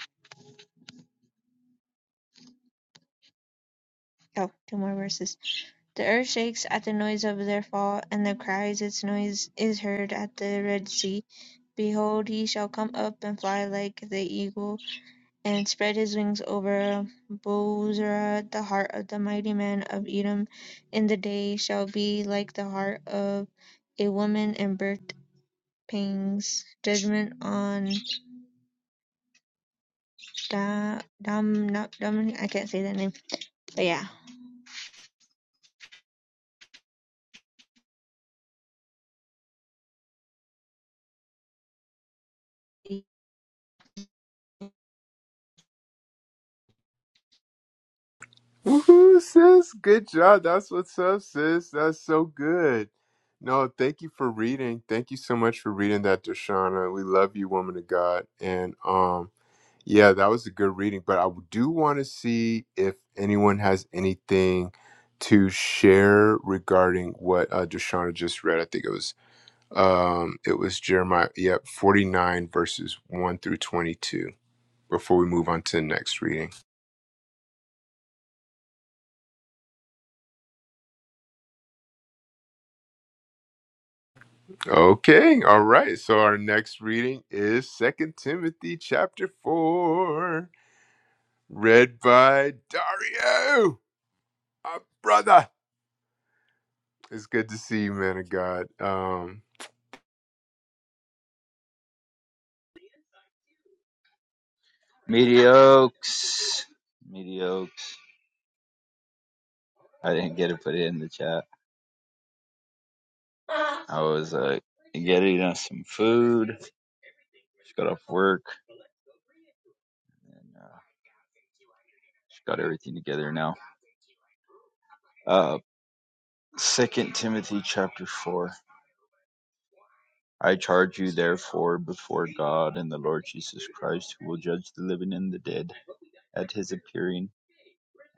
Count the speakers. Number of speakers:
3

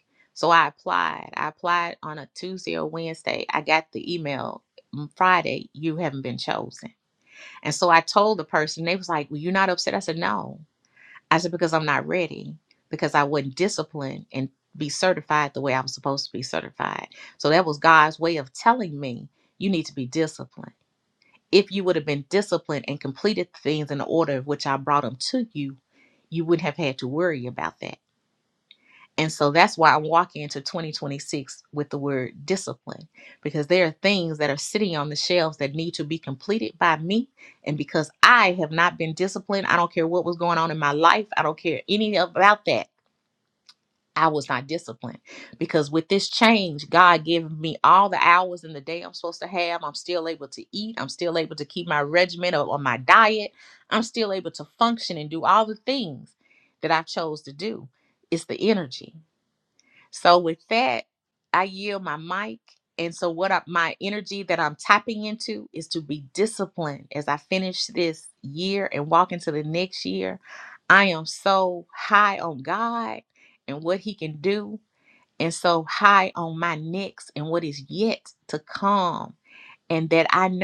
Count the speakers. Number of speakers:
1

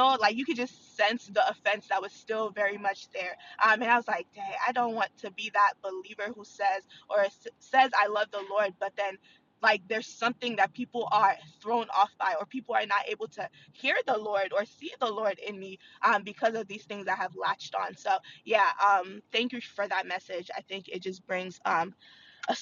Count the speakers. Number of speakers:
1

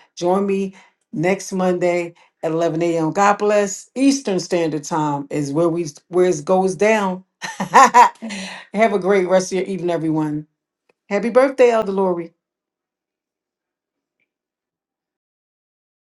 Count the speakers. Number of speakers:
1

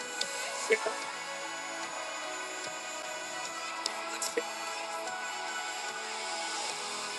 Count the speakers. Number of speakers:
0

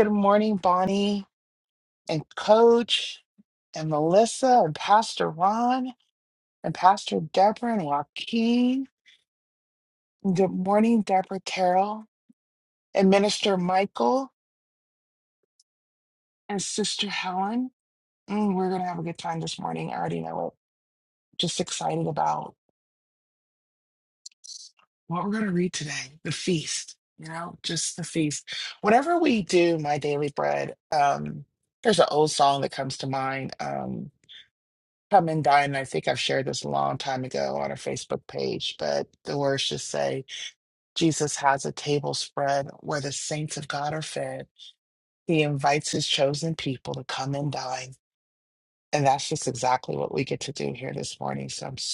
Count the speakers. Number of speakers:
1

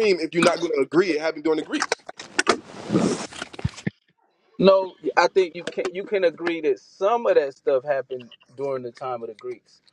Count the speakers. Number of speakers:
2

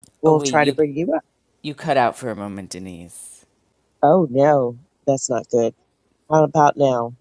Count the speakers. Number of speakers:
2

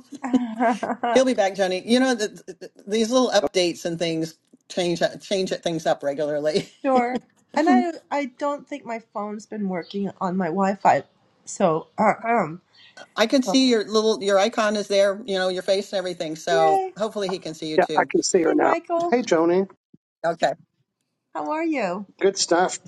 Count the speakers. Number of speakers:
3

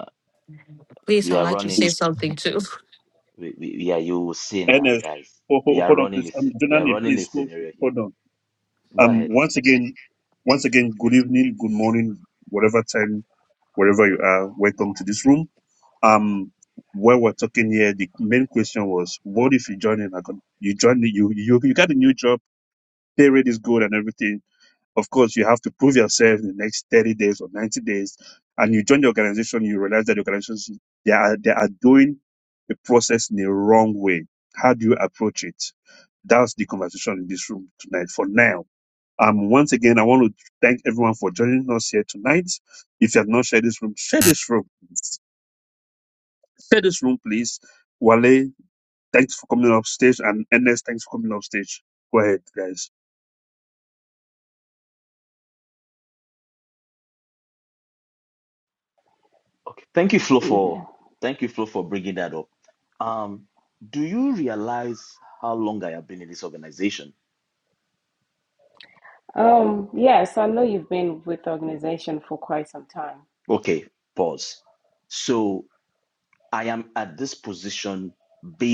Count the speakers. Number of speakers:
4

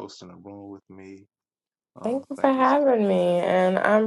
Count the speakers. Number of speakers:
2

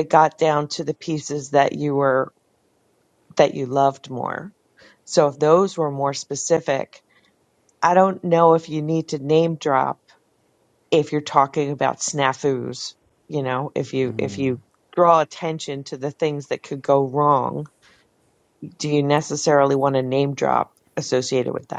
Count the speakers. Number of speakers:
1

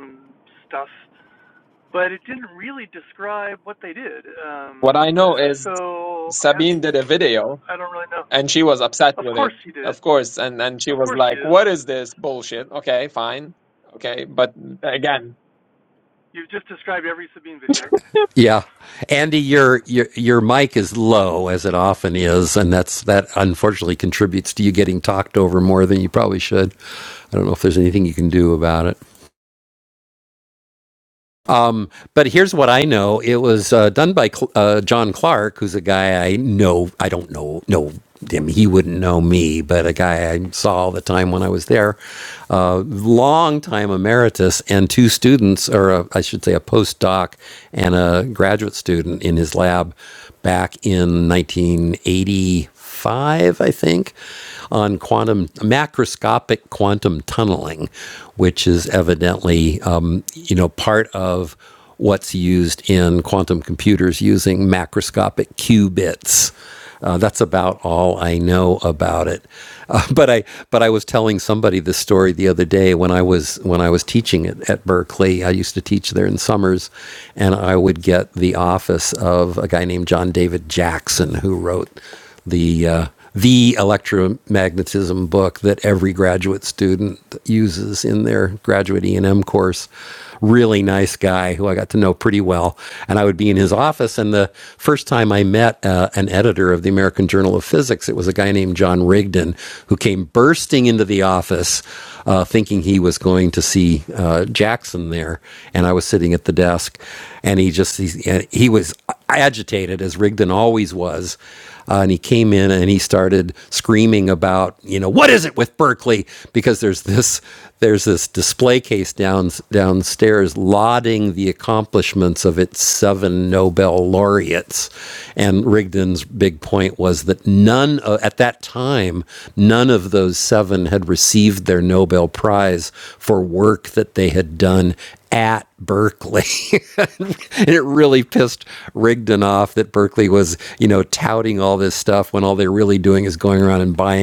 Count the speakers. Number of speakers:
3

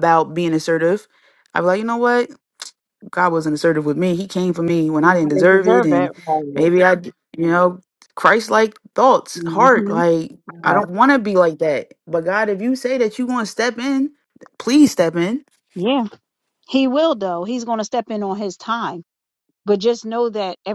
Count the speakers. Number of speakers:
2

